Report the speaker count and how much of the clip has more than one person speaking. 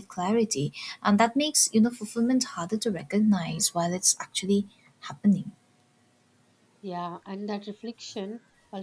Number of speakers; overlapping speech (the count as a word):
two, no overlap